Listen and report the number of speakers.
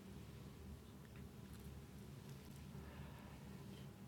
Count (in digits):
0